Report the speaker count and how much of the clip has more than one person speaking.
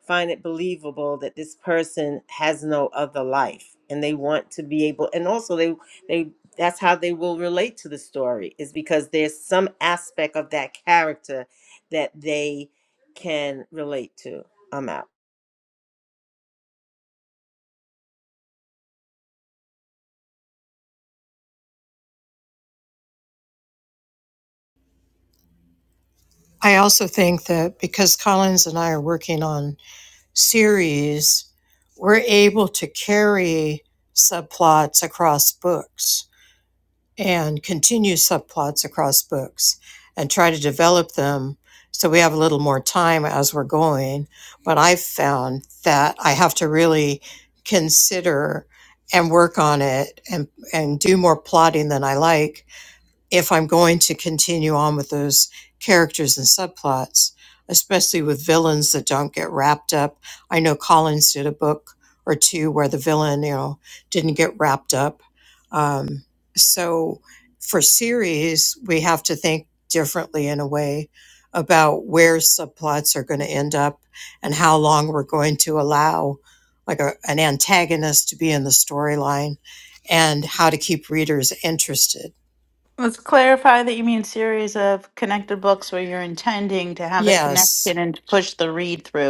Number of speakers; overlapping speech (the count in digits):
3, under 1%